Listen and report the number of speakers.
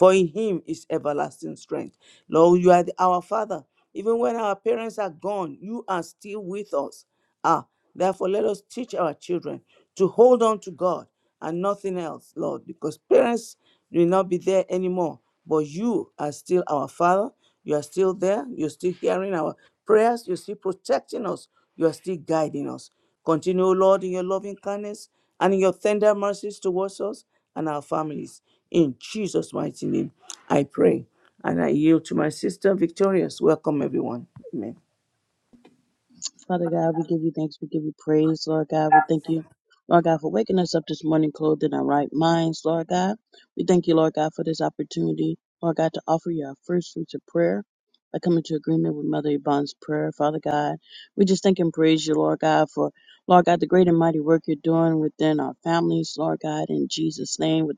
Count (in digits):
2